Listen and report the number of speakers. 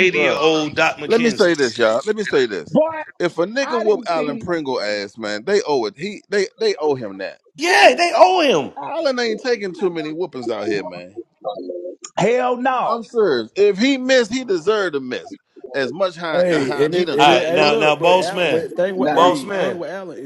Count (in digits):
4